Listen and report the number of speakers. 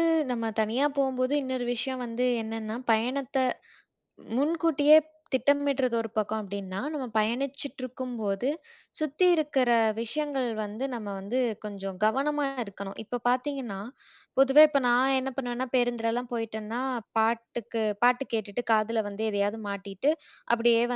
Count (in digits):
1